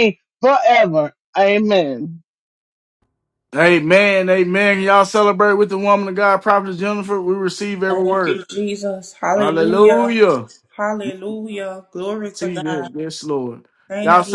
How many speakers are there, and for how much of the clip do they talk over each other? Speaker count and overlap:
three, about 15%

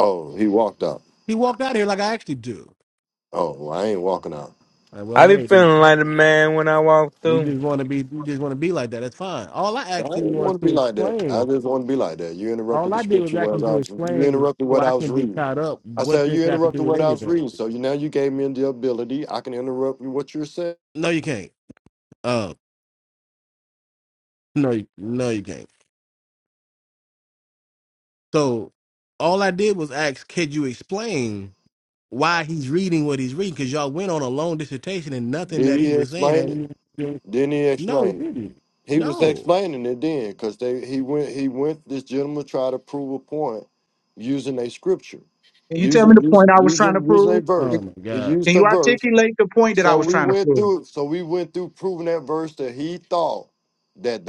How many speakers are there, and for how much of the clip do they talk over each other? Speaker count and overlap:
four, about 22%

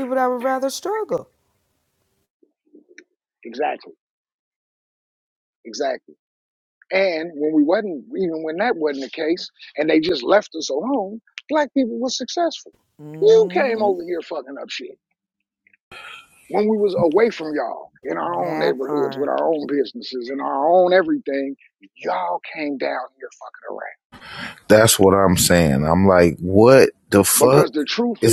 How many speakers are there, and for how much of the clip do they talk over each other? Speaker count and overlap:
three, about 7%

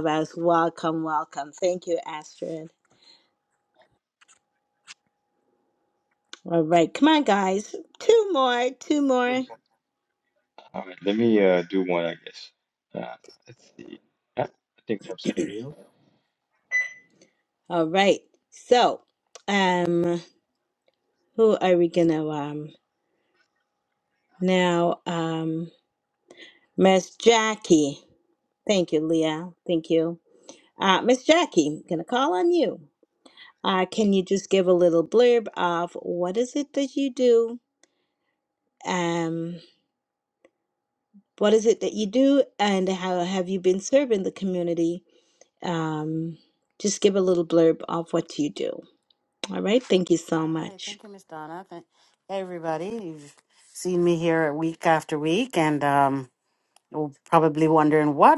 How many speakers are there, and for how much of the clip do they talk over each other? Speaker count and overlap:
three, under 1%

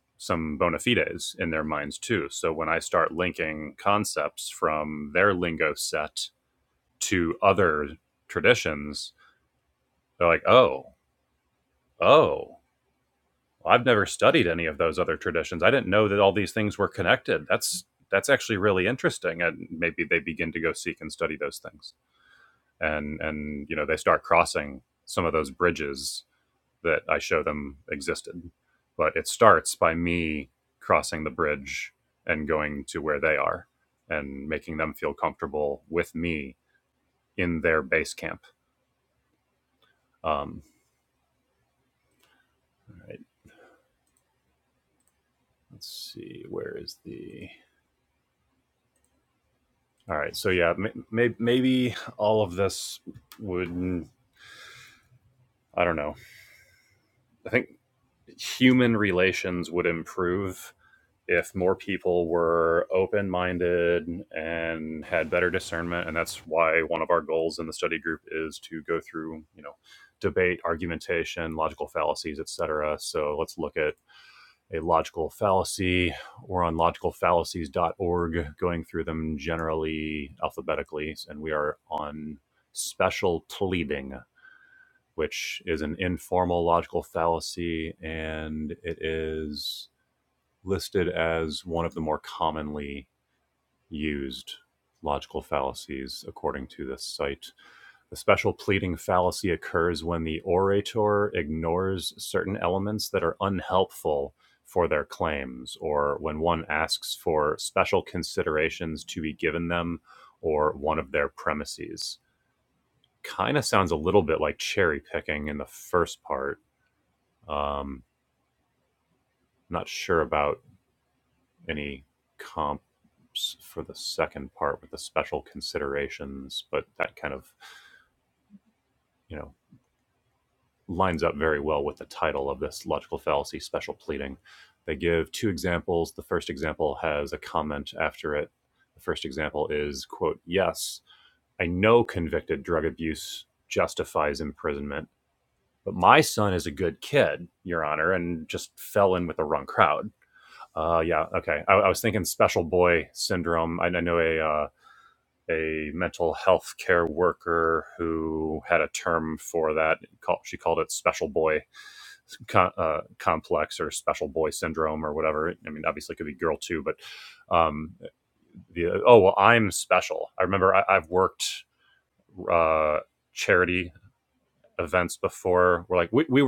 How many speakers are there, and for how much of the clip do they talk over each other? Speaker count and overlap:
one, no overlap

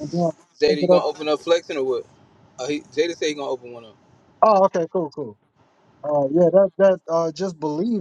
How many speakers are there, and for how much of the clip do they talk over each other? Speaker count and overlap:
two, about 4%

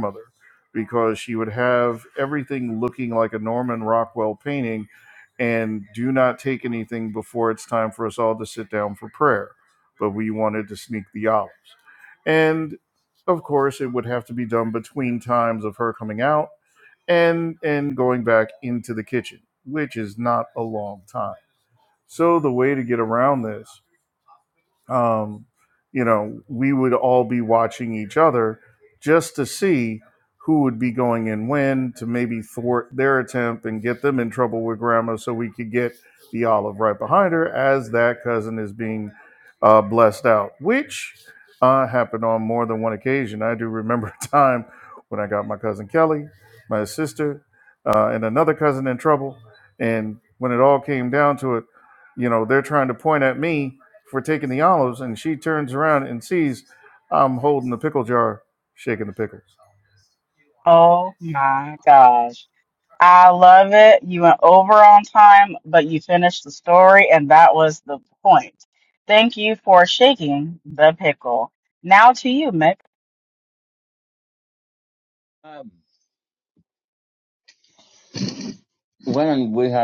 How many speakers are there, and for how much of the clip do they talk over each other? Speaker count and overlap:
three, no overlap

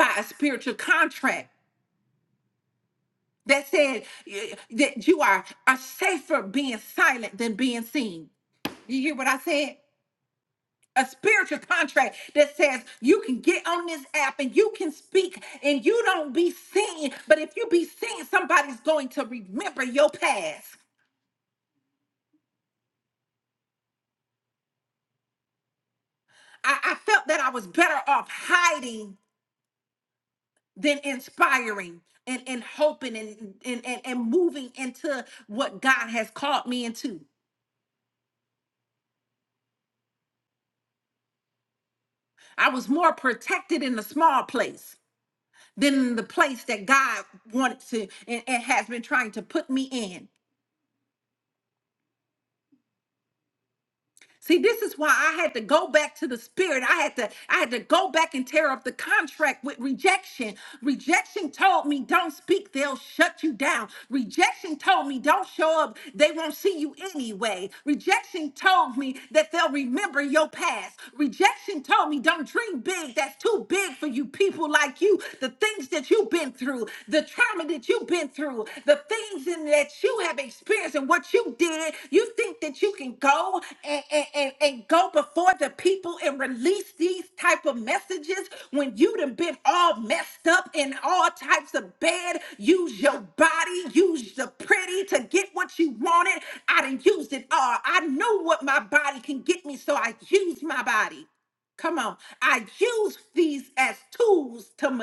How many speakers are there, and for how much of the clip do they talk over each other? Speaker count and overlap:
one, no overlap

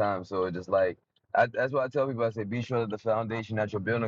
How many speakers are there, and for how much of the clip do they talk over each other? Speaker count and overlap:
one, no overlap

